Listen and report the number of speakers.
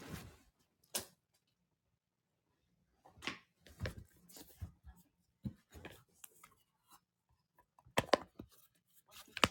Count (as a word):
zero